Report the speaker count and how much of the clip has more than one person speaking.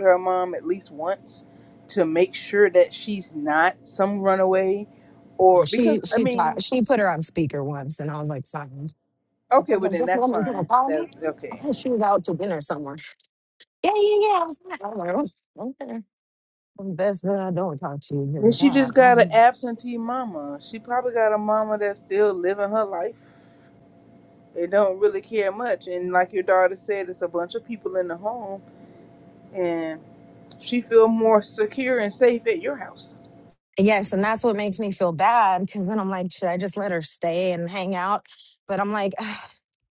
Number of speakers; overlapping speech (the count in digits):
2, about 9%